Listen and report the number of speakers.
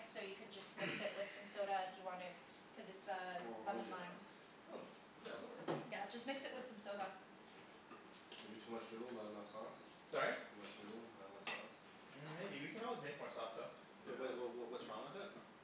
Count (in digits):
4